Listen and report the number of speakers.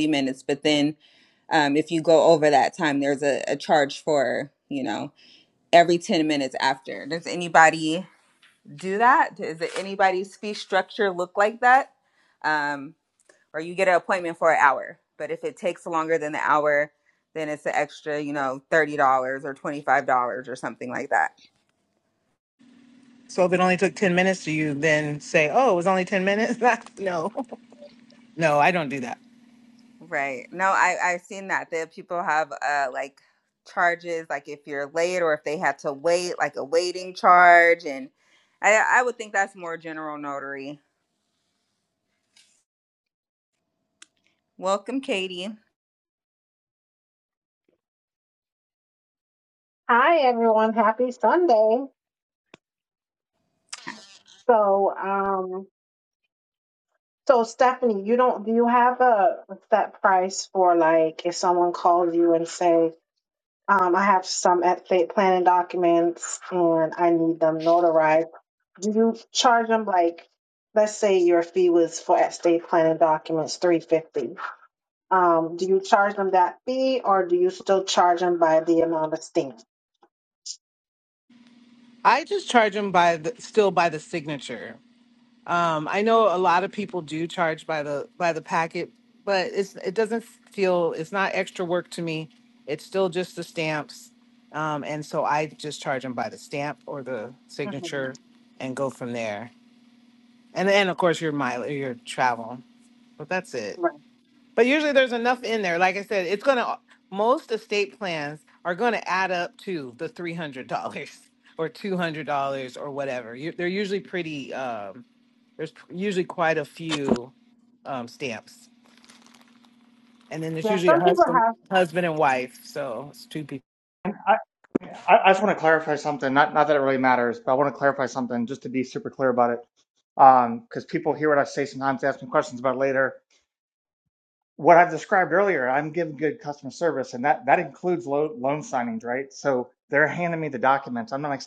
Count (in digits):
4